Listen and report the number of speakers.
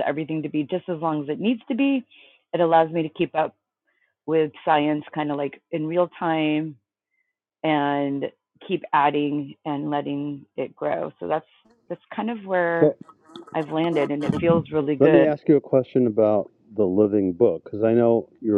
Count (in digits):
2